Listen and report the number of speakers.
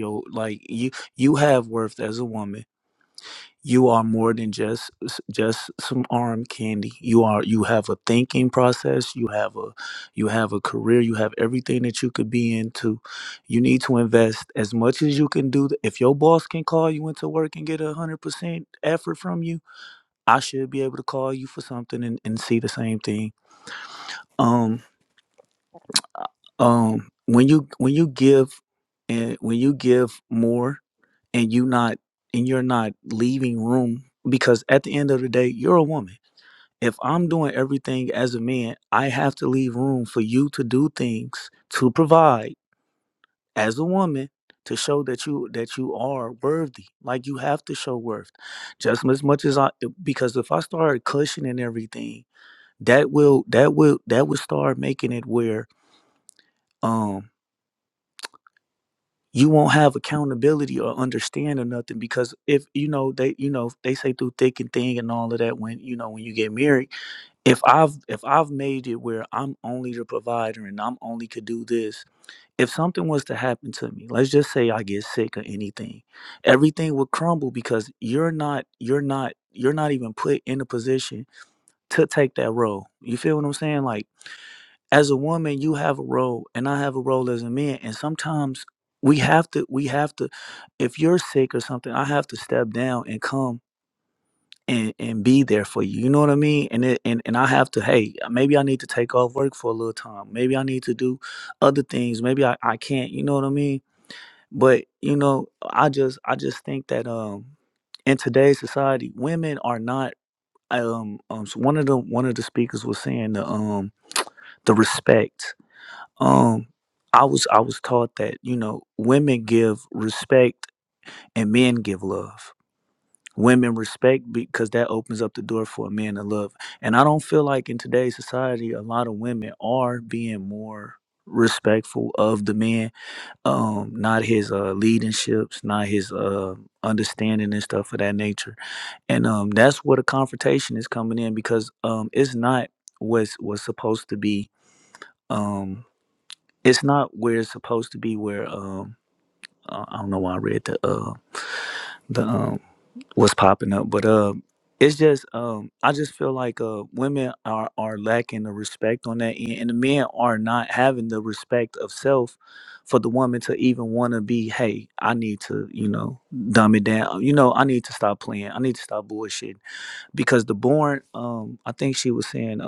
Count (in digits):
1